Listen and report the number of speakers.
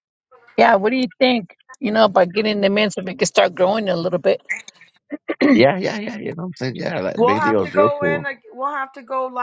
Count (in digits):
3